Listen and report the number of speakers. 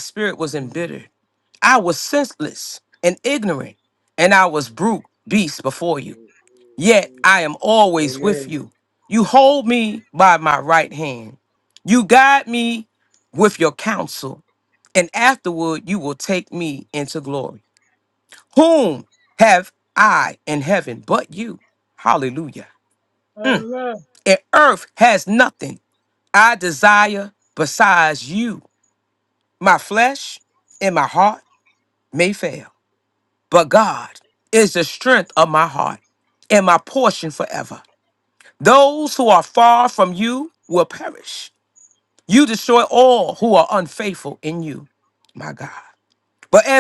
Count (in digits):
2